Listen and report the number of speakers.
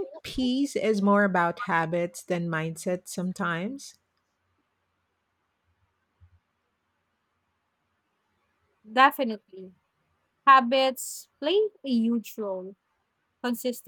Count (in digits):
2